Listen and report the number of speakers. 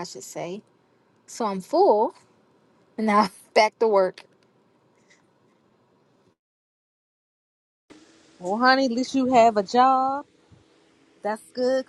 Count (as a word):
two